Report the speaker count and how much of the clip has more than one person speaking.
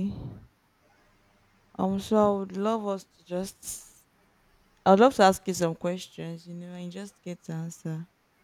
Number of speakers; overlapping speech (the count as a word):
one, no overlap